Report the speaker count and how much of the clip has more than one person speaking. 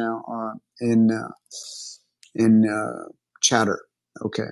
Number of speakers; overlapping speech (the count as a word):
one, no overlap